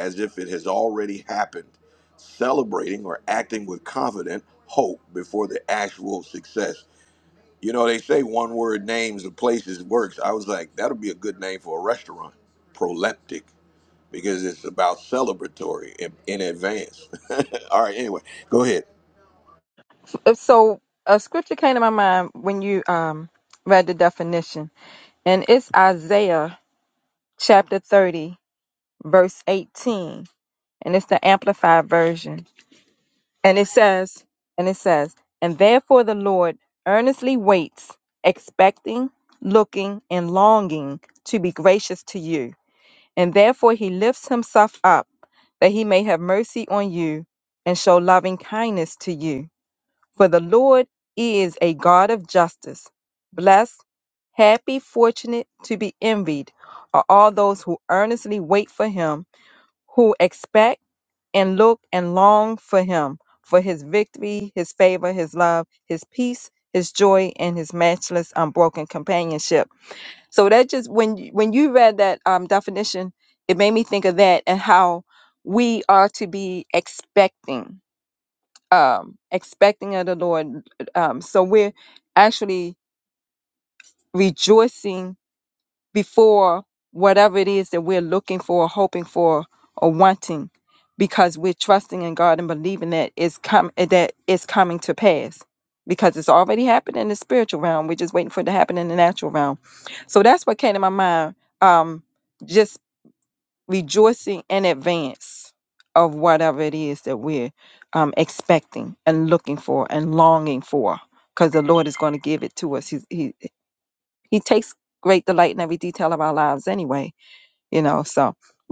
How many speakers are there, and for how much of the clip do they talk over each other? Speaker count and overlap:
2, no overlap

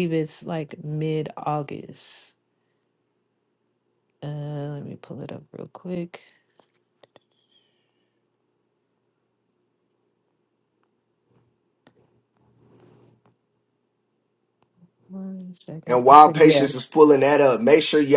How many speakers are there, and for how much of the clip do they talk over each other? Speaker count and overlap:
2, about 5%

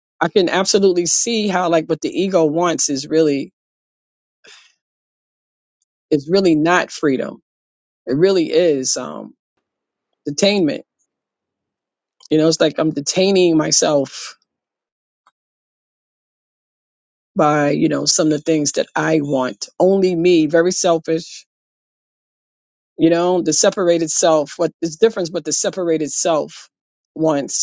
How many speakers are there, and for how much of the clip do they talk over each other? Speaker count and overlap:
1, no overlap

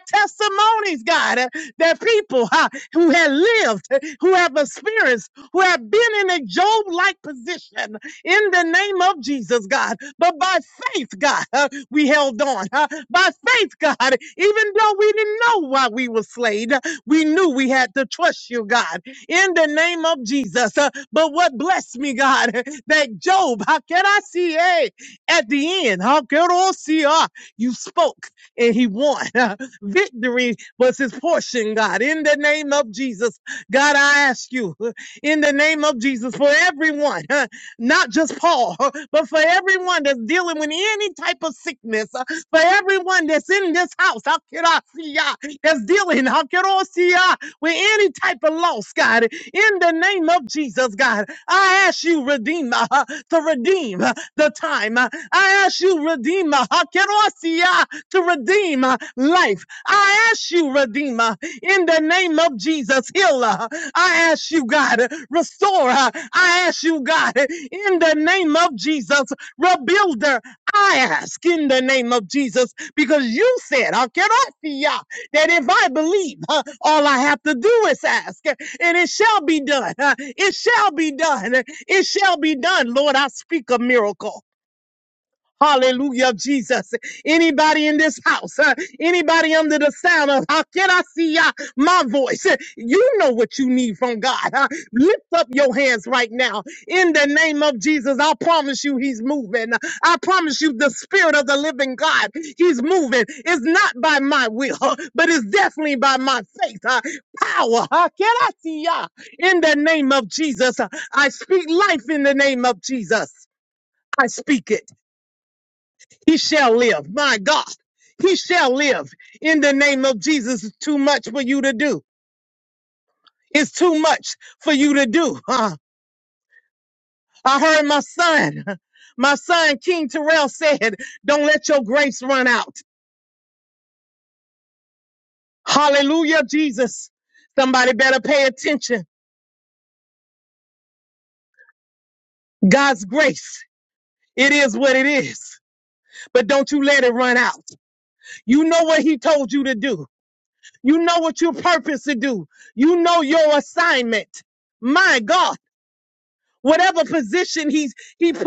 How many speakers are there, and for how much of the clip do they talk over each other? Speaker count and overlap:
1, no overlap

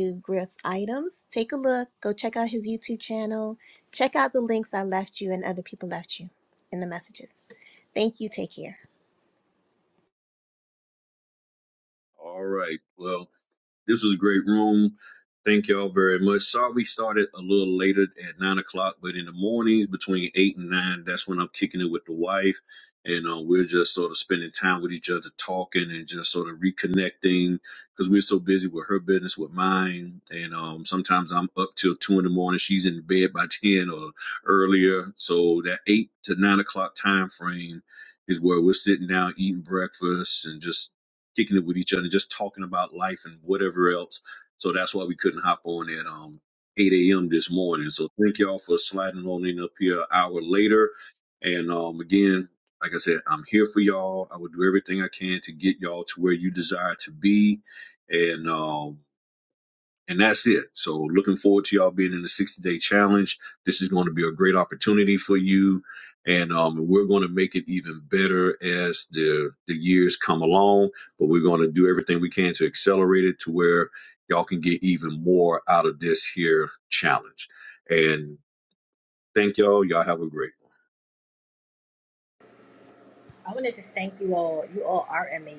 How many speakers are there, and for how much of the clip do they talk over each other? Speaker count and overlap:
3, no overlap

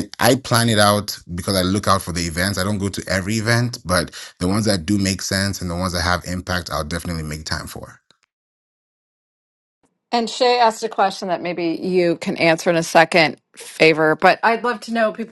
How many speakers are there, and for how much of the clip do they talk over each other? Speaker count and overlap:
2, no overlap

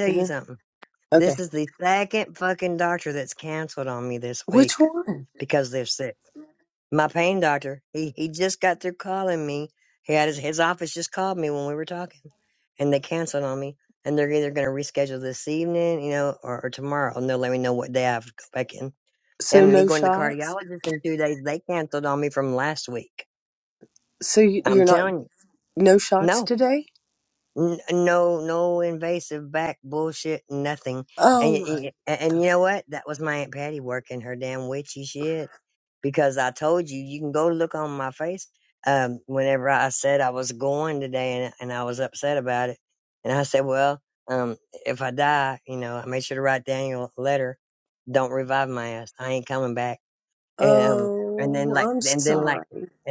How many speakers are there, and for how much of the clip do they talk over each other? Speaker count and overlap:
2, about 8%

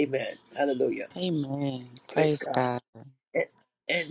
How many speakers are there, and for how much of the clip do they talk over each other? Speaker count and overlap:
2, about 13%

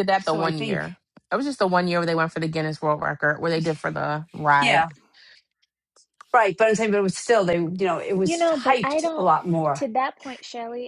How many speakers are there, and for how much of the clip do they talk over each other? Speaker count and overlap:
3, about 17%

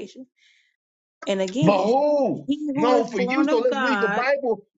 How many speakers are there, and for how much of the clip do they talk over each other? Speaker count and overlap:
2, about 39%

